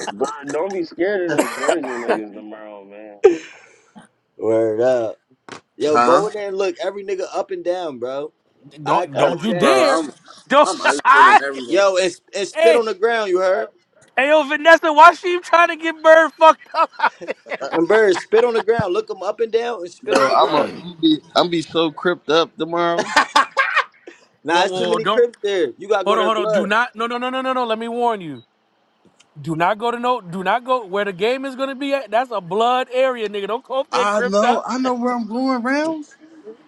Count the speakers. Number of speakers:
4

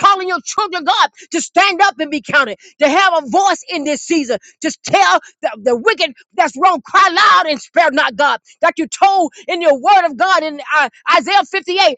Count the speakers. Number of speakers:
1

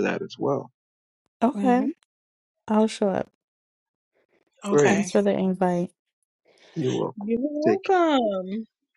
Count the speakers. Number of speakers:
3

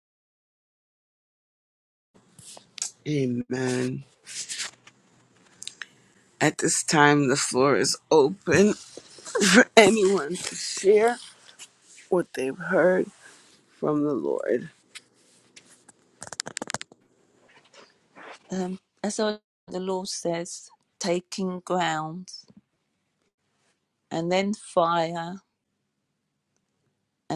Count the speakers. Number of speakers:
2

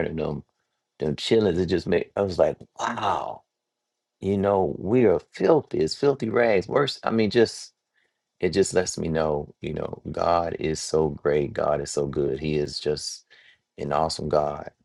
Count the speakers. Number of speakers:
1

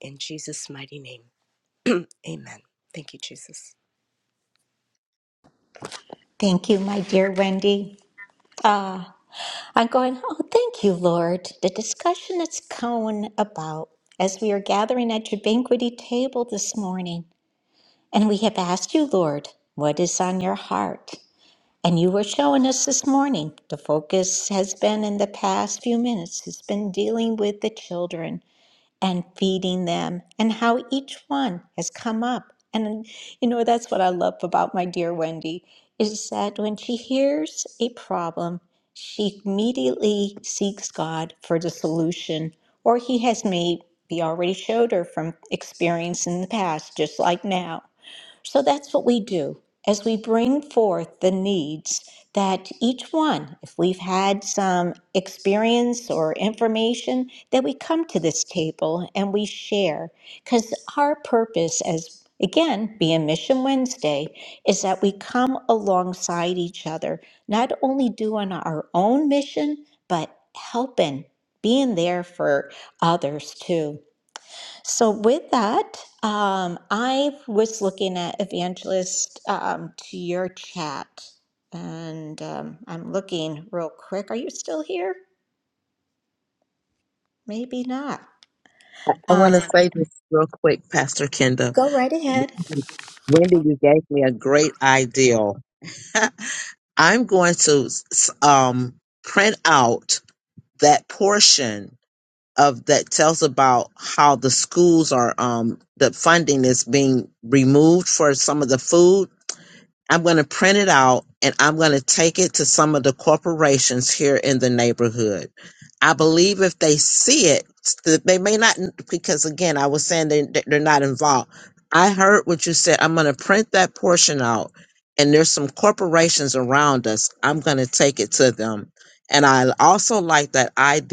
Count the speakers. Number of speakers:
3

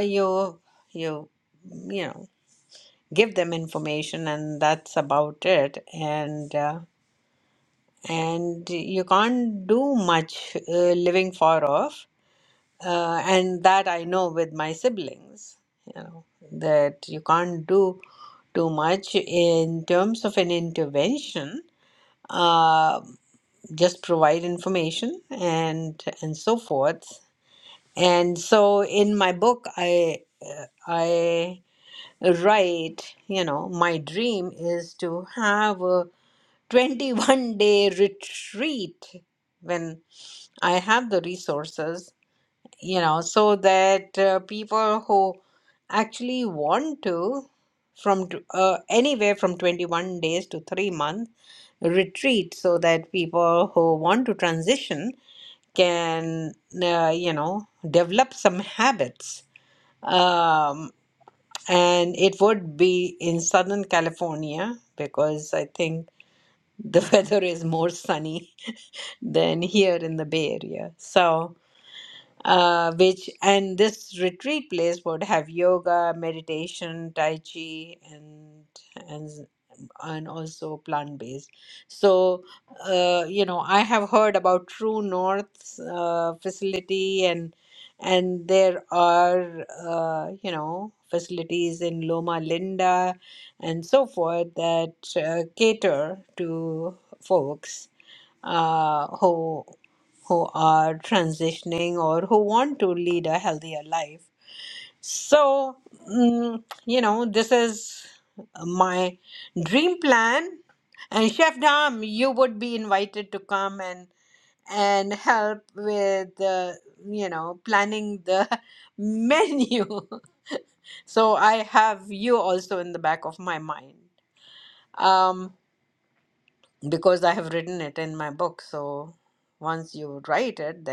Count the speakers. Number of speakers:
1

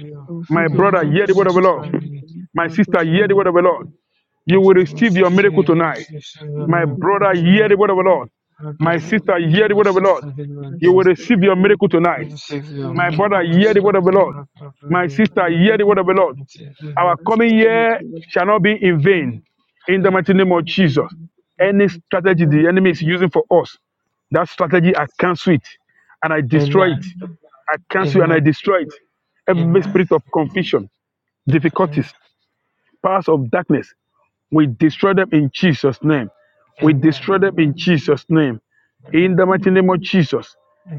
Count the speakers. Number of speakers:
3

